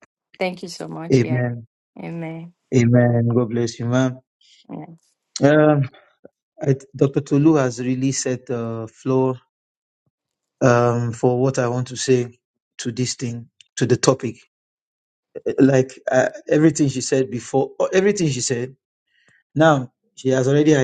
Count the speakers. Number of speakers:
2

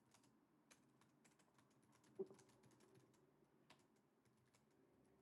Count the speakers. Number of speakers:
0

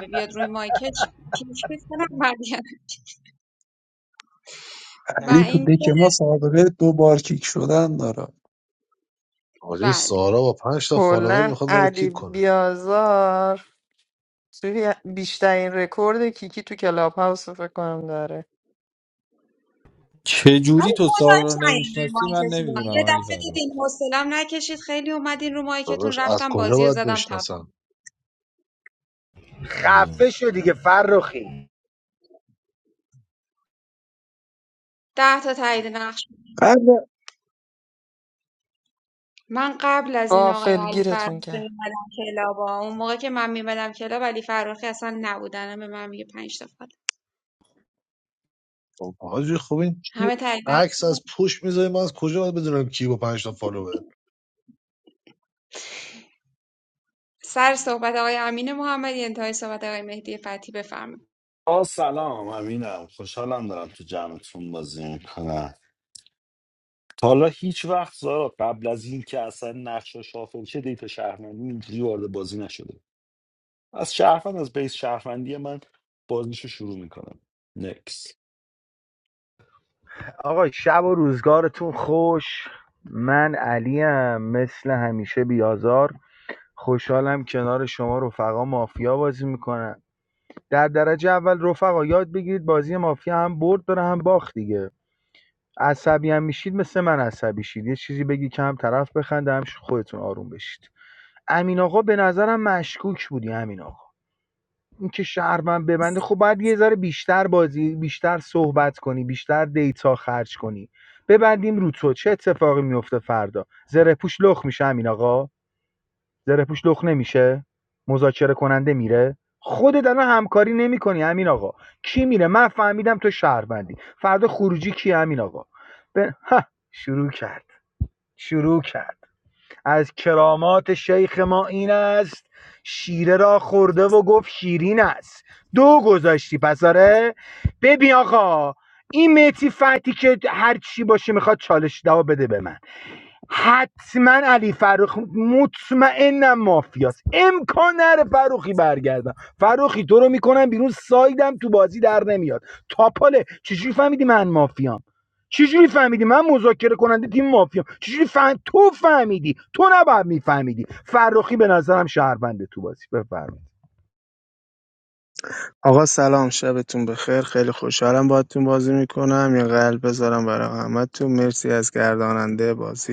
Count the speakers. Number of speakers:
8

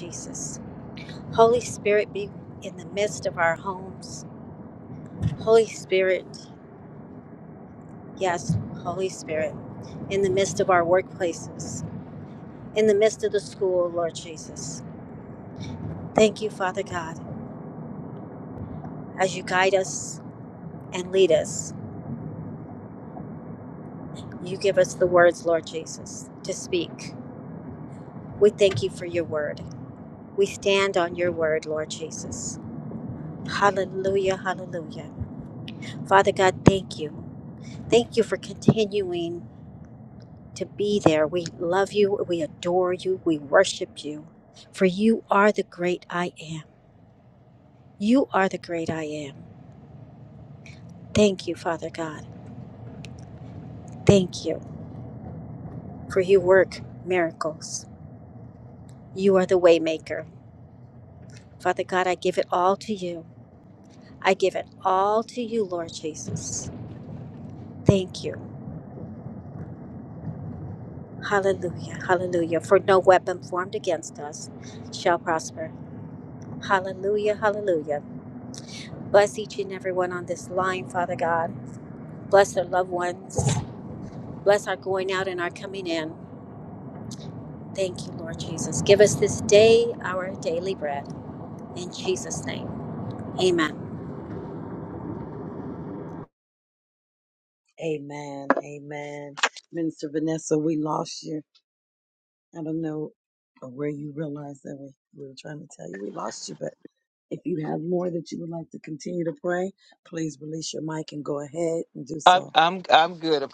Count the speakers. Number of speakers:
3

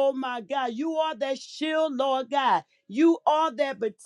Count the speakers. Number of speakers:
1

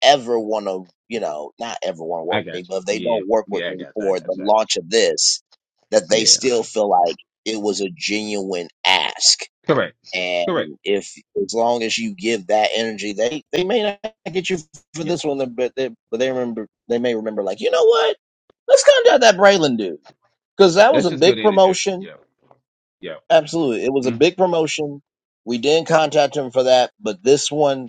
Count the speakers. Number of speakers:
2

